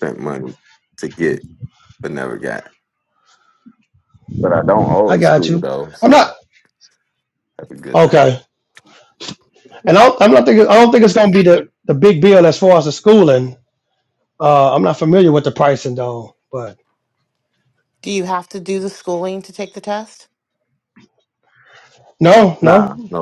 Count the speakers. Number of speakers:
3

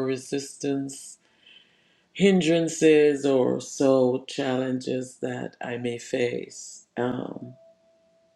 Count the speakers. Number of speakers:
1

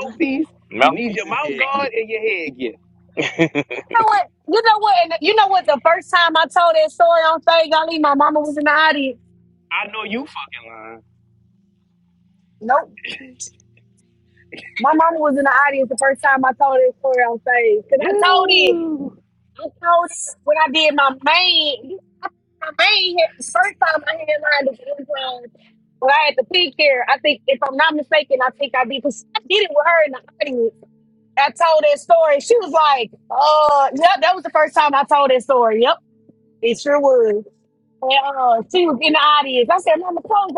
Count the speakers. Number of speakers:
3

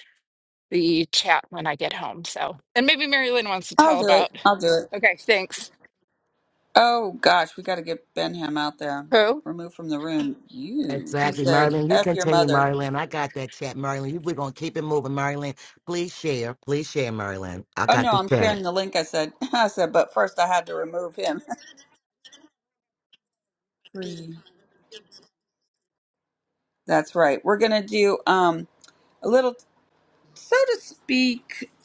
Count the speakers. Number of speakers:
3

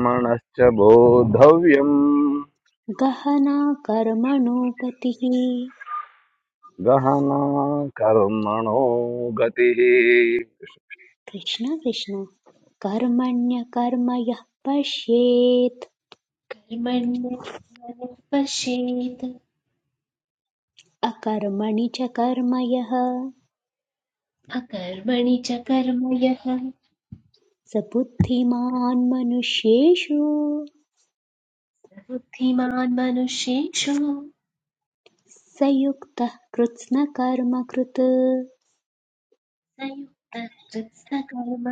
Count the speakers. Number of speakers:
3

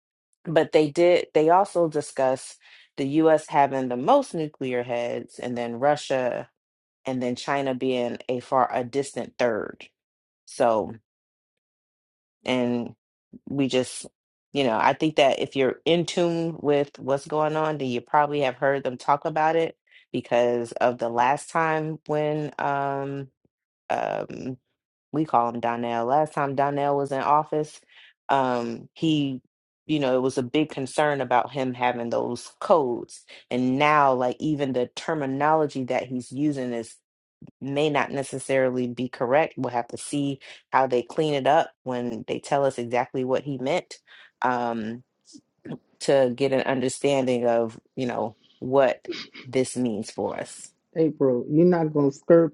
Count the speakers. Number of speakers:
2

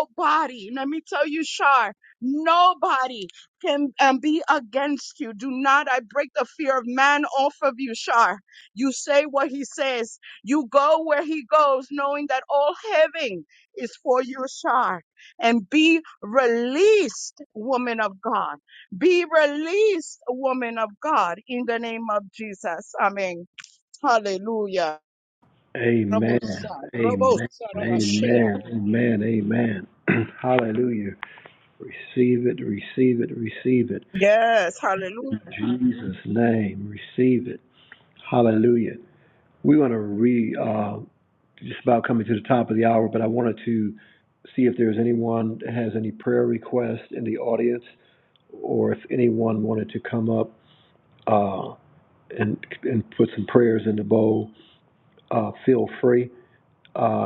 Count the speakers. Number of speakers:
2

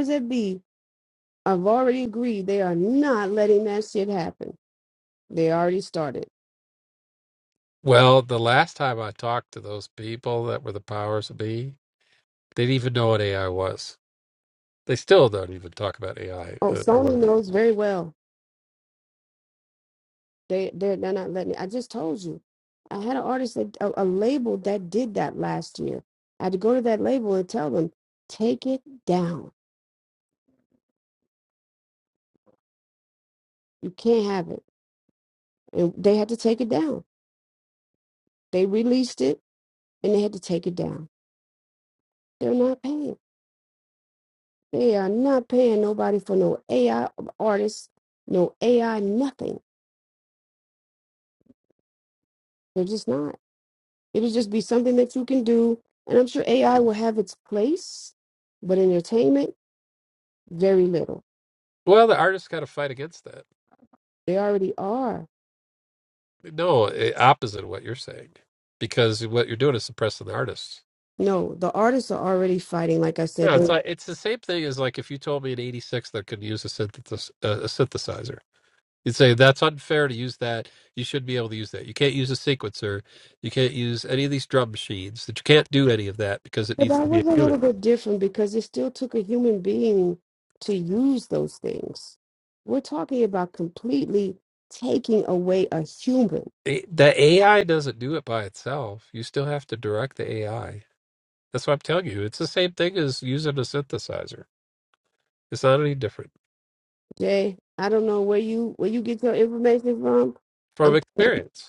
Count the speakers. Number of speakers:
2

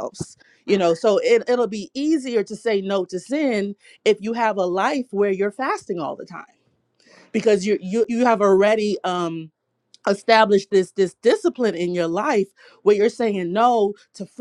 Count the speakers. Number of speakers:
1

